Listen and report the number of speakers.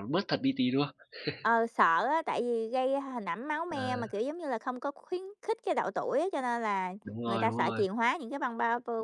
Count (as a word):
two